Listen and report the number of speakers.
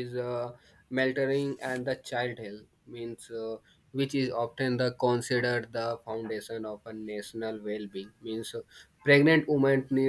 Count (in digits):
1